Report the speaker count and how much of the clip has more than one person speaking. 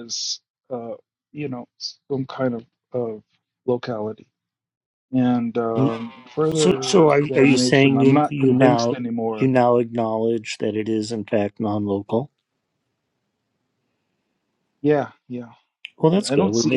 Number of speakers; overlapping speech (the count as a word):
two, about 19%